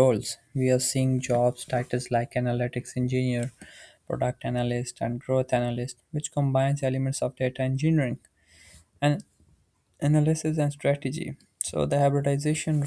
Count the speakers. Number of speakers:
one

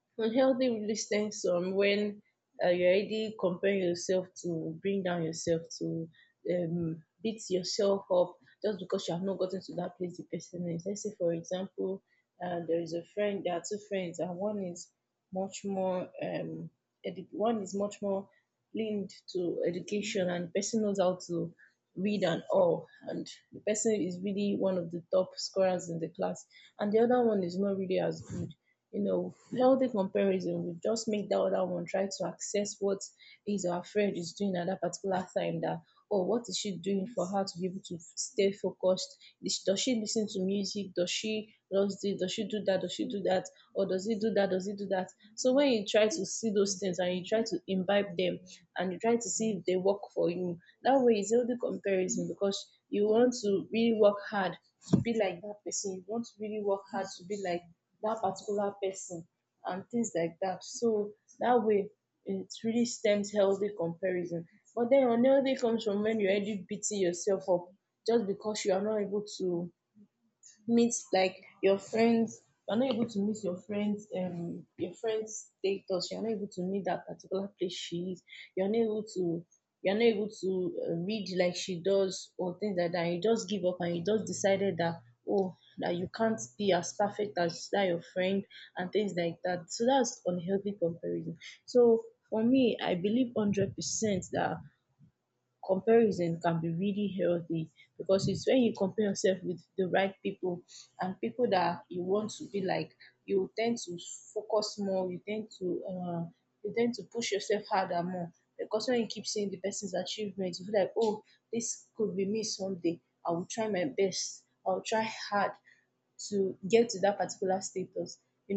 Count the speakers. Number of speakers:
one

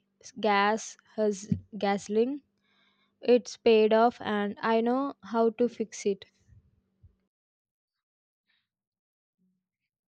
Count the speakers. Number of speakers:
one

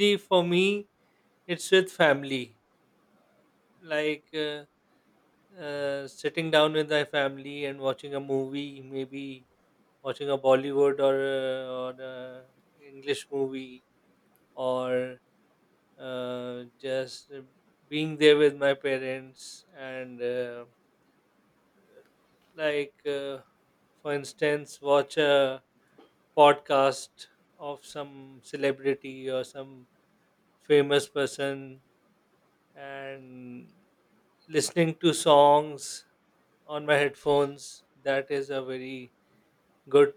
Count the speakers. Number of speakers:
one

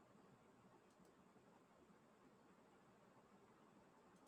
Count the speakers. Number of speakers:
zero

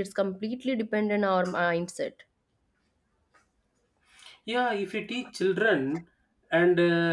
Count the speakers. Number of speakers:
two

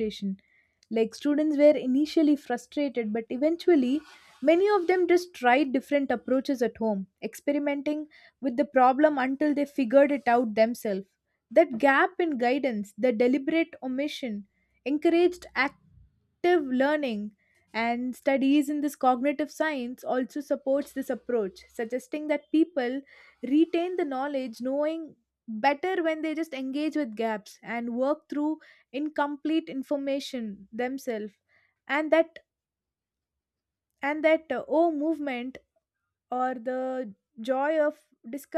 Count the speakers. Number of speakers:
one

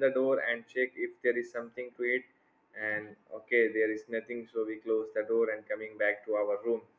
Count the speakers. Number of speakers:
one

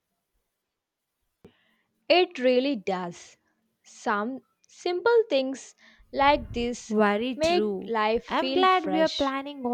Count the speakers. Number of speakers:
two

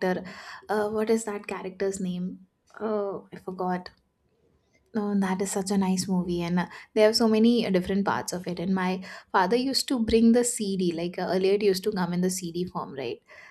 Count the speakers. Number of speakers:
one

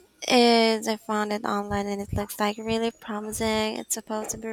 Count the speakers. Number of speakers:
one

